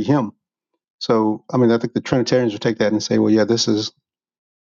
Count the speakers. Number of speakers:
1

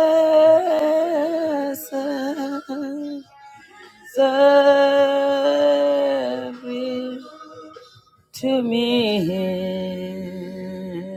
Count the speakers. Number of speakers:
1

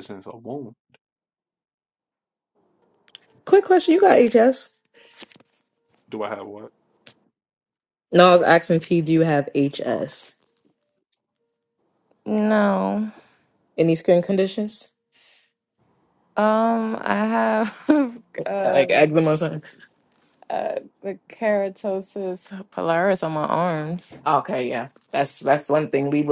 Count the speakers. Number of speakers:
3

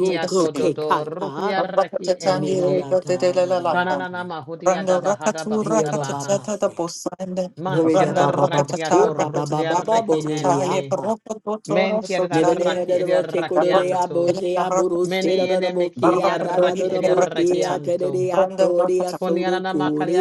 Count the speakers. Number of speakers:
3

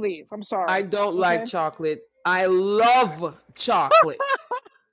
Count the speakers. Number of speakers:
2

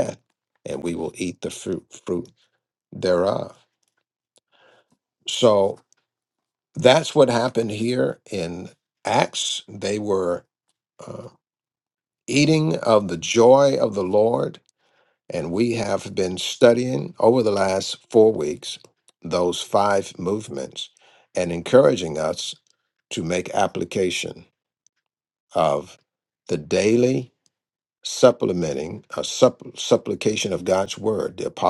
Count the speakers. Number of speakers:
1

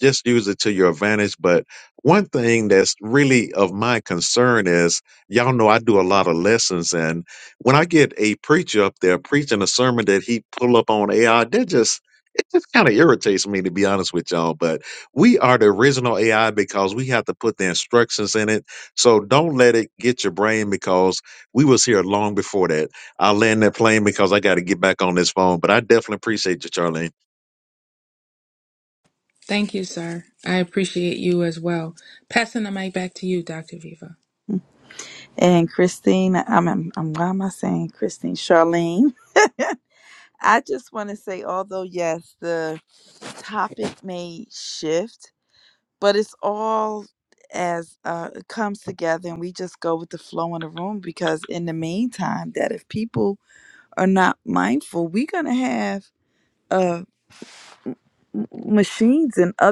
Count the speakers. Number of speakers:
3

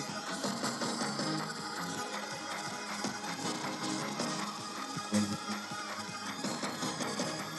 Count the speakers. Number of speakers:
0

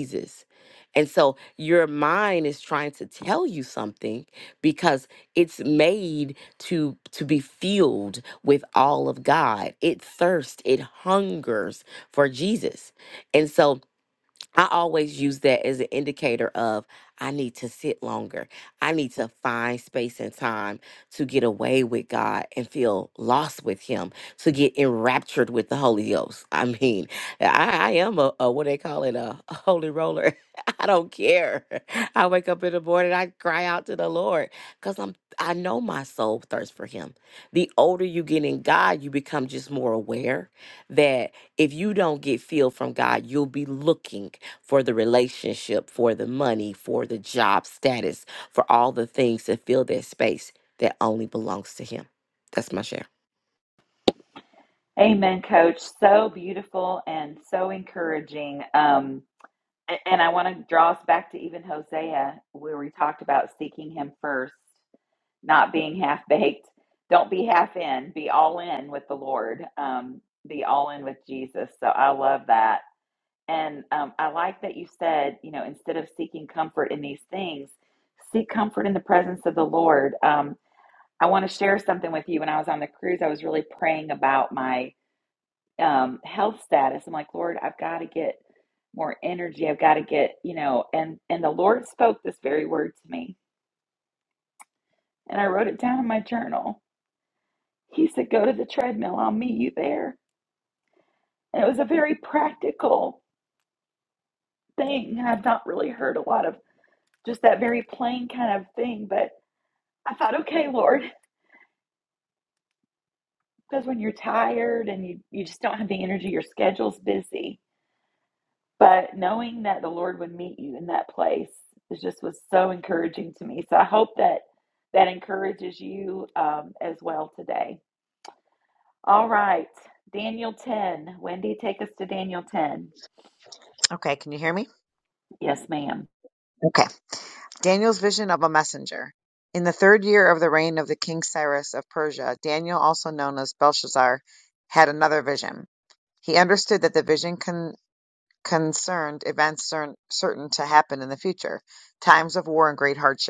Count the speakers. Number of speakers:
3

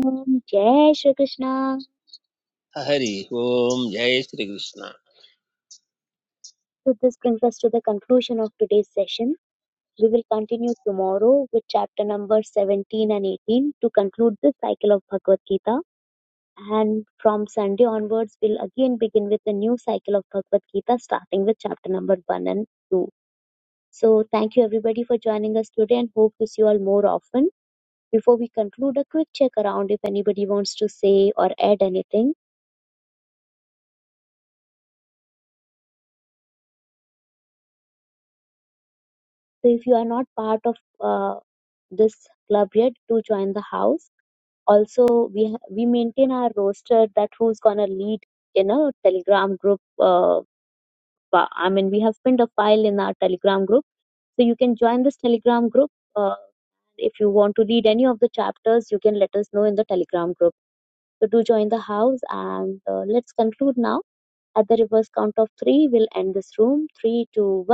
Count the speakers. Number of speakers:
2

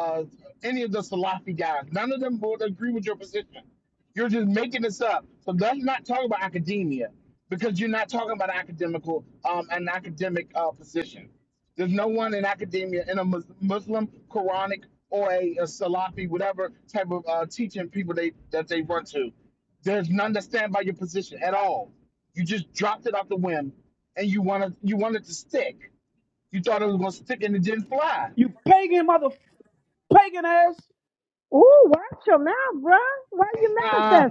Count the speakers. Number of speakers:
3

